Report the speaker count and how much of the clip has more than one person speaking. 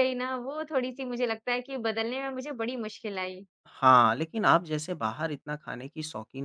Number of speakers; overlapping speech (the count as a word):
two, no overlap